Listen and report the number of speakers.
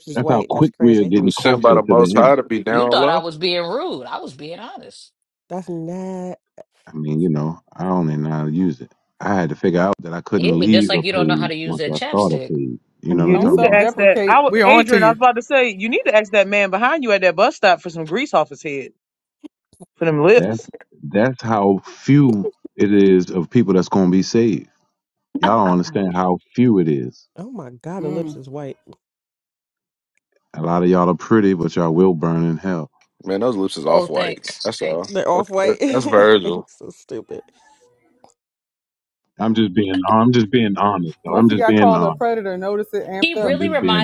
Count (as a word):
six